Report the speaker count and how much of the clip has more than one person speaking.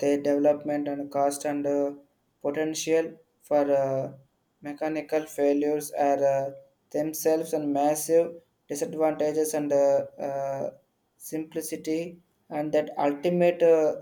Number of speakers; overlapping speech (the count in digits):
1, no overlap